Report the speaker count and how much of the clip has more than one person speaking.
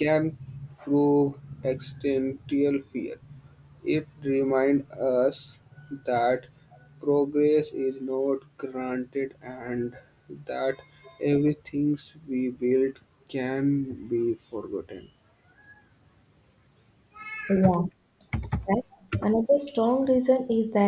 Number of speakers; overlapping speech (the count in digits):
2, no overlap